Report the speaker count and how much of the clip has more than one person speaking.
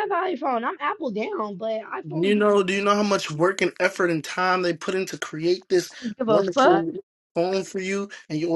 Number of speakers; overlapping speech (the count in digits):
2, about 11%